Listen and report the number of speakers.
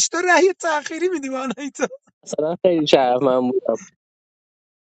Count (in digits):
2